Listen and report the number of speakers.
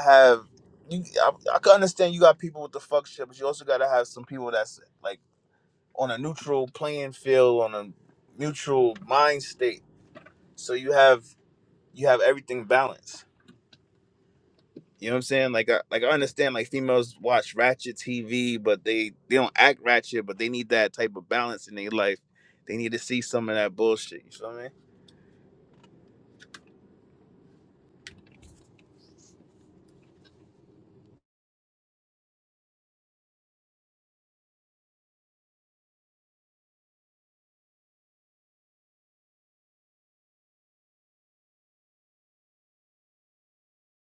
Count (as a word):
one